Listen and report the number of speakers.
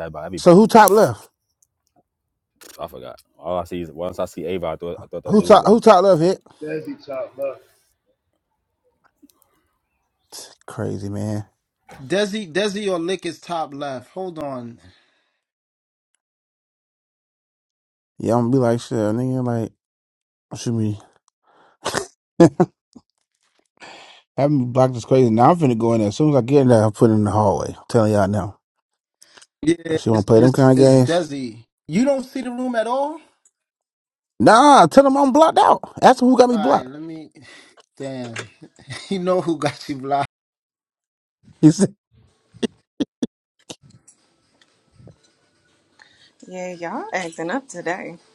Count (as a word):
five